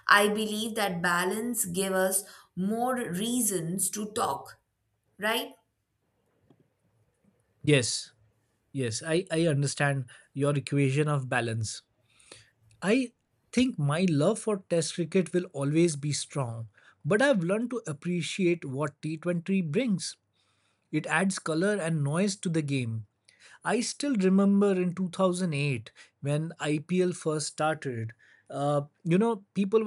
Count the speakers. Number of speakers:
2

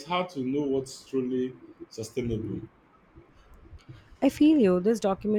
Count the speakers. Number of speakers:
2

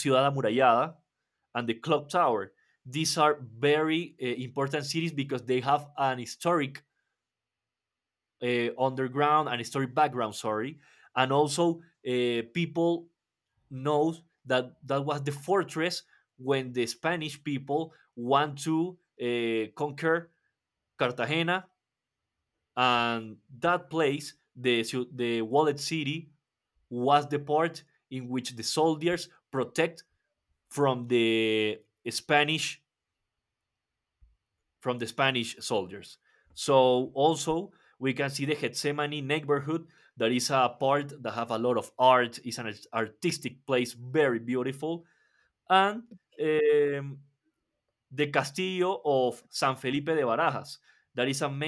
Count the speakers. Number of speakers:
1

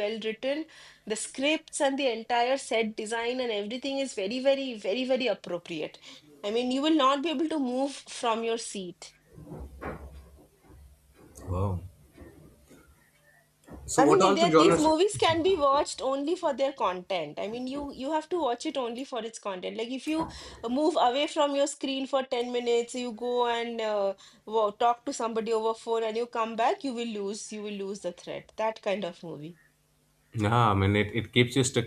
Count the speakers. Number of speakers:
2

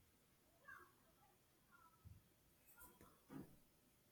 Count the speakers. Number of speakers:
0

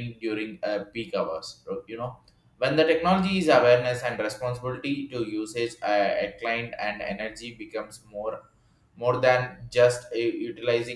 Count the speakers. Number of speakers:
1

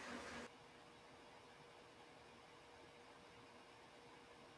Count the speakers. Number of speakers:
0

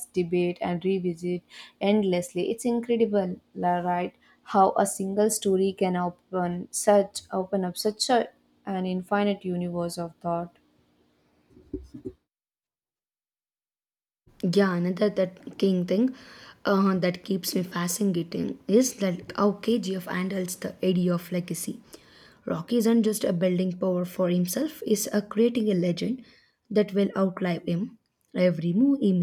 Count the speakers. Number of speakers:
2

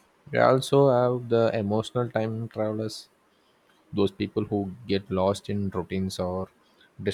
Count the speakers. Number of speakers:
1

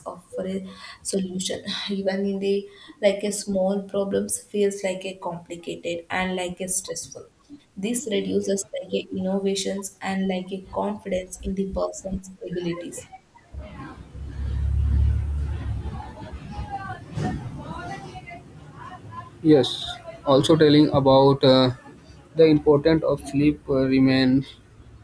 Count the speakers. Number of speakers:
2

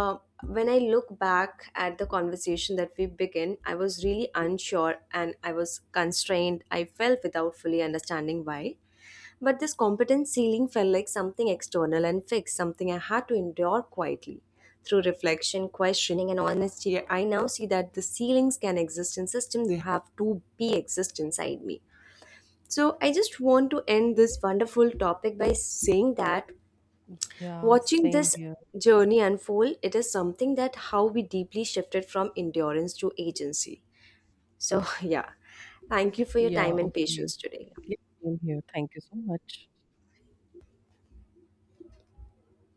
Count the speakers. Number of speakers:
2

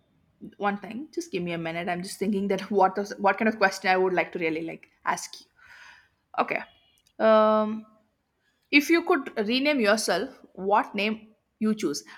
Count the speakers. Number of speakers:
1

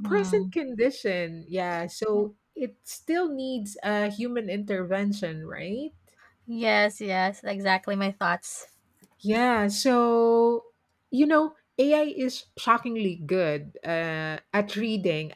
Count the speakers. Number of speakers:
2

